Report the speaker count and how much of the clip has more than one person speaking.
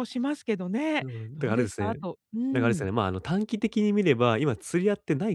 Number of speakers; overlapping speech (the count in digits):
2, about 18%